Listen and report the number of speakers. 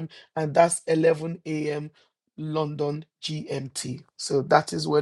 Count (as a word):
one